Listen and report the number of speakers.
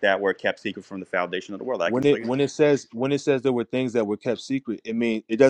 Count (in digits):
2